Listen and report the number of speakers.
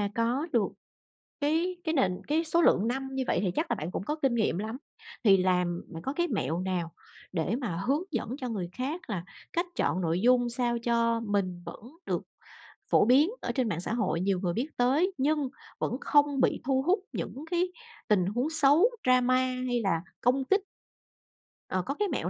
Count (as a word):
one